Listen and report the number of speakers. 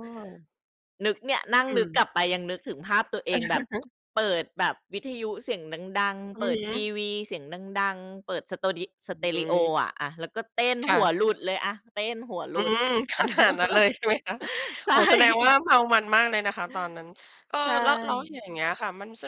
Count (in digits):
2